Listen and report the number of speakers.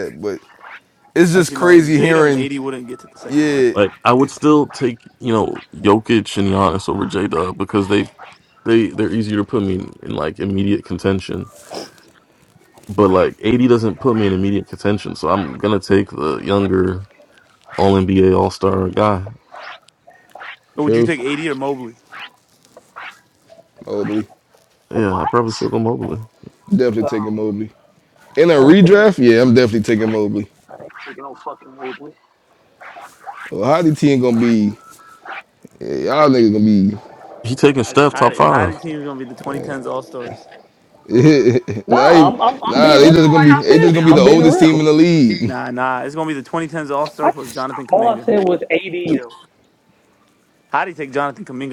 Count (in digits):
4